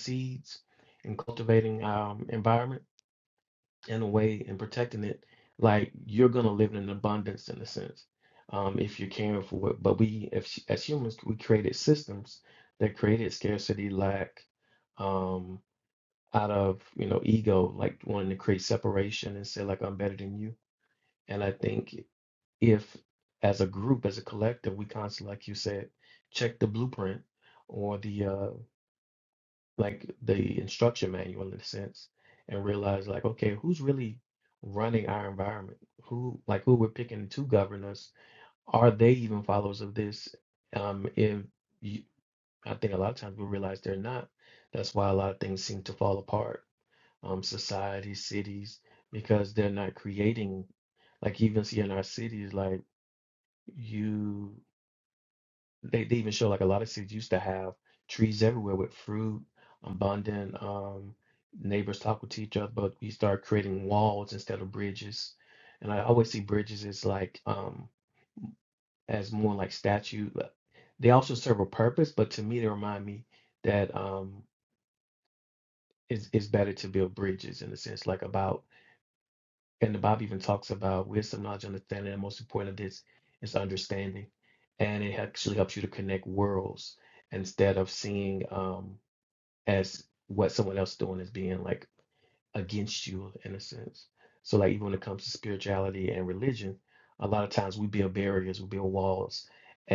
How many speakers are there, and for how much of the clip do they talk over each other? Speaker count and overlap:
one, no overlap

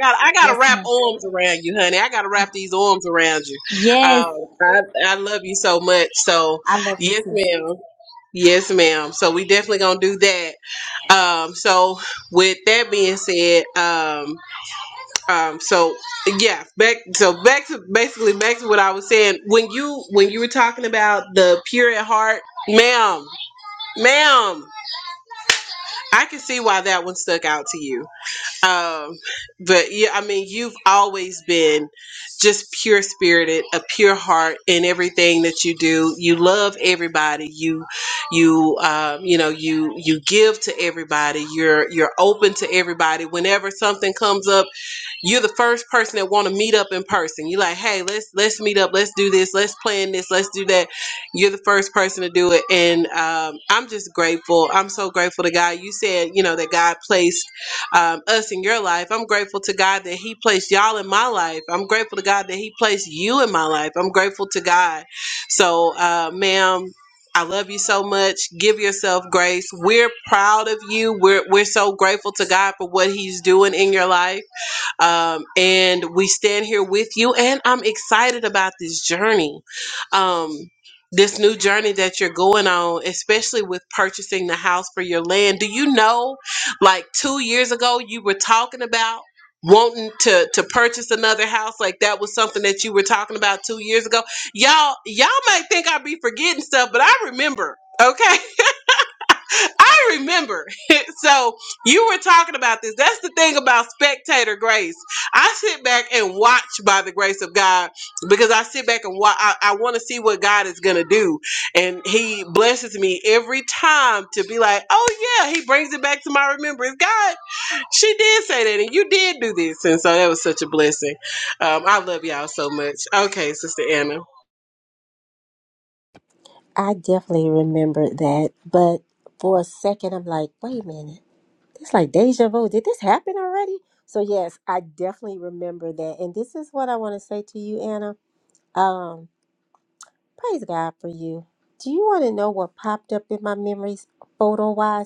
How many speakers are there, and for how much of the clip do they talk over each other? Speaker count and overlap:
three, about 1%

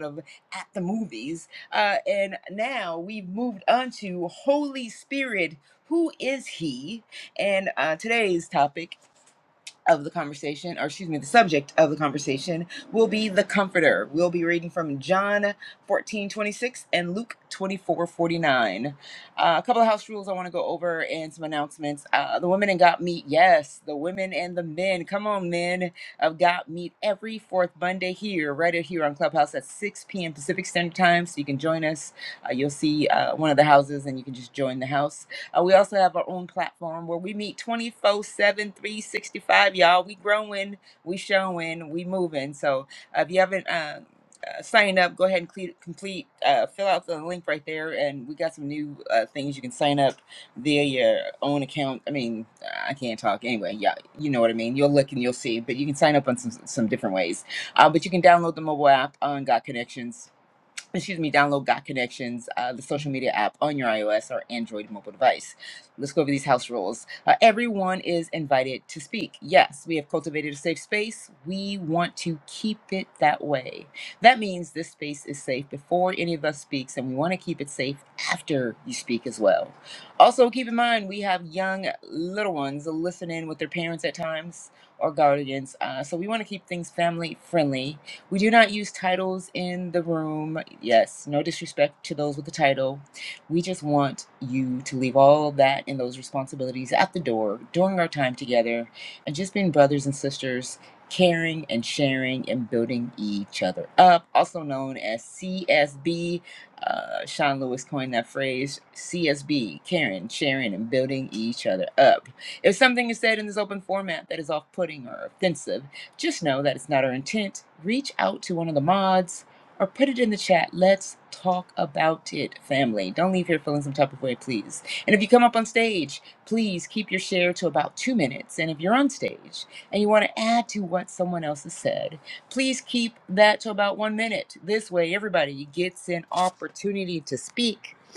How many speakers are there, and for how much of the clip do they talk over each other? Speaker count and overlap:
one, no overlap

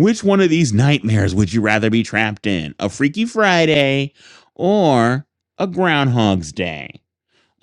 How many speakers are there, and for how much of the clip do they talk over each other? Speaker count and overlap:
one, no overlap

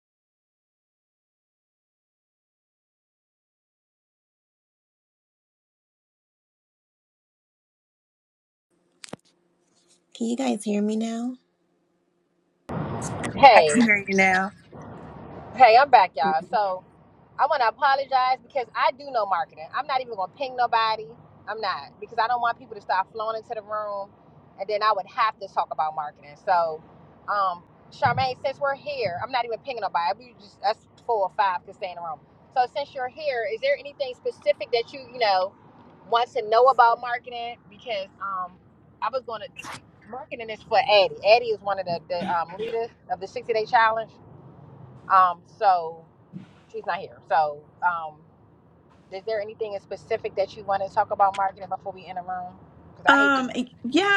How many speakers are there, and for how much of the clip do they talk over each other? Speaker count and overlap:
three, about 1%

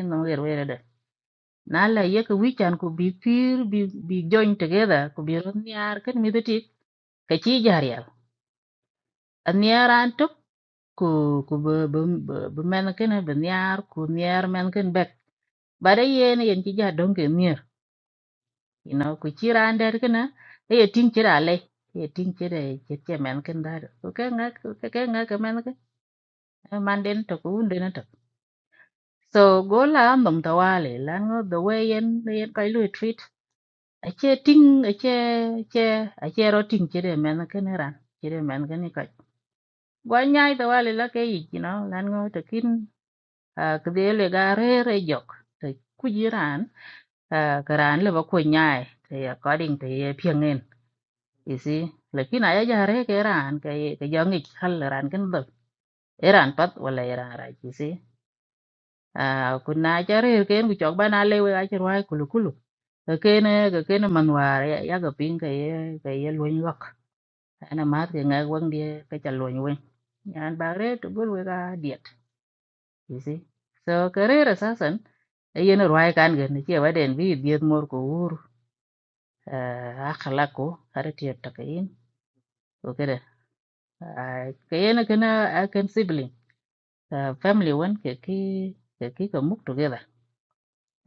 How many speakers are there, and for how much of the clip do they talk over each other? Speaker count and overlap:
one, no overlap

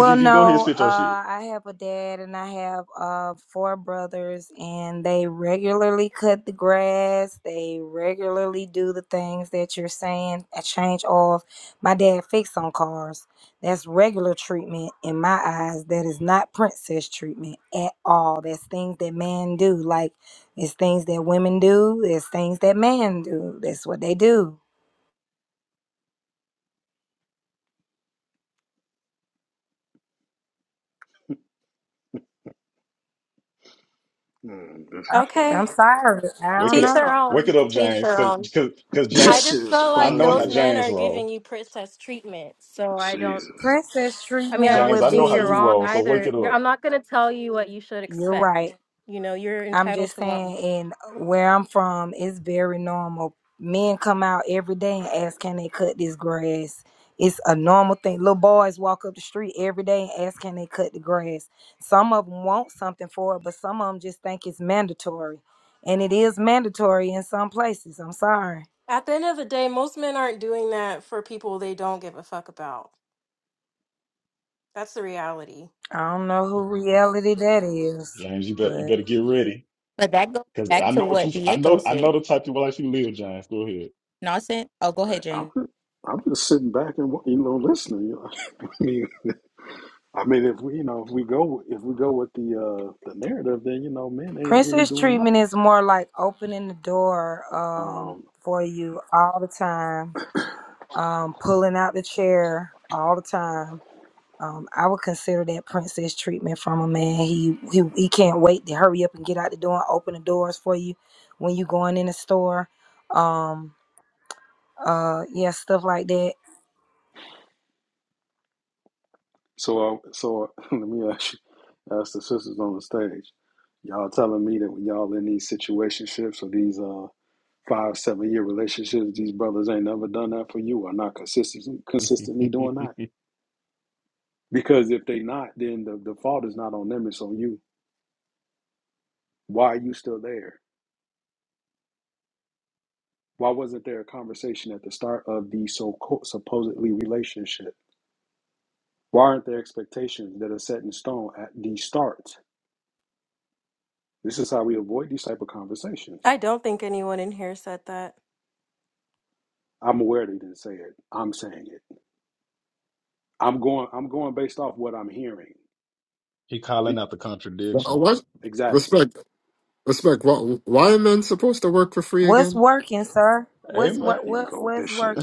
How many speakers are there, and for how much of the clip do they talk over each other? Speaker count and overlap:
six, about 9%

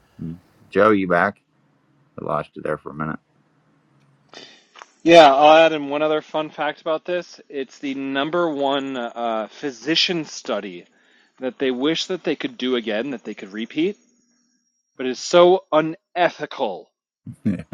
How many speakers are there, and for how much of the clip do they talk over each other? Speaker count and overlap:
two, no overlap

